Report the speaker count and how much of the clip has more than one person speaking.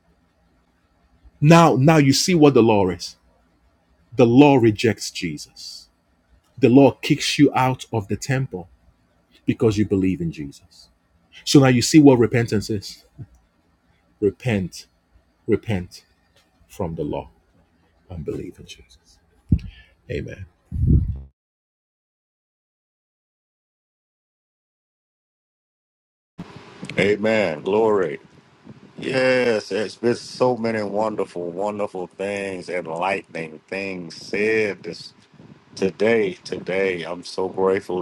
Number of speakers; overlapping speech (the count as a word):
two, no overlap